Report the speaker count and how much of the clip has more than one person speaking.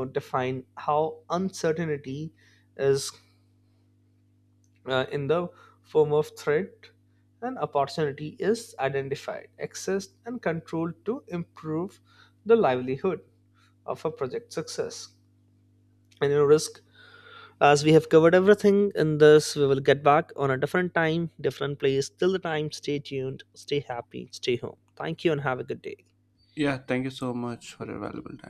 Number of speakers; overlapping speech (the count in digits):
2, no overlap